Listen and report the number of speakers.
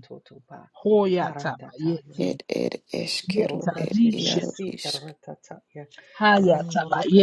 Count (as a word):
three